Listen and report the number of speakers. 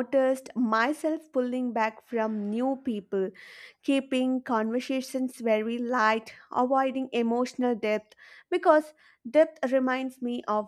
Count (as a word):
one